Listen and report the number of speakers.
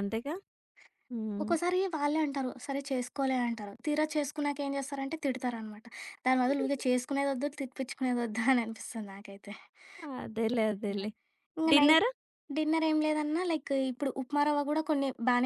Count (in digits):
2